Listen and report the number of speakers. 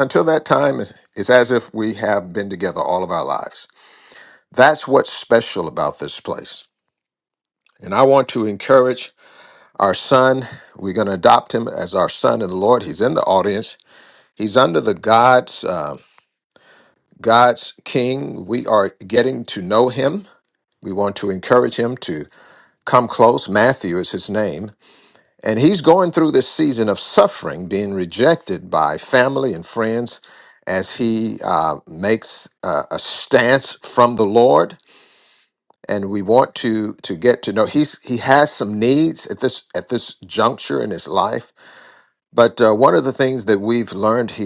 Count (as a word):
one